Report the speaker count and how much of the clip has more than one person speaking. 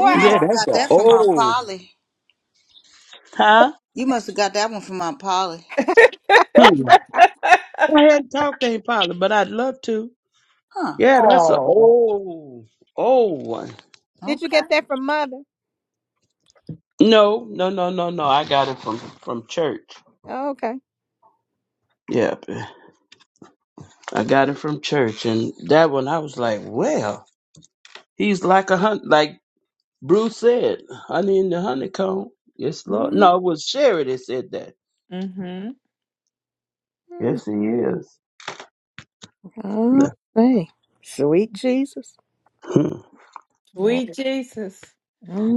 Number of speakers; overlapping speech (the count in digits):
4, about 7%